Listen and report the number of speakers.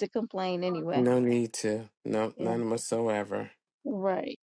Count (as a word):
two